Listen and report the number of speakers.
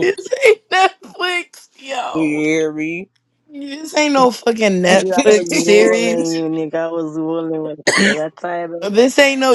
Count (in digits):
3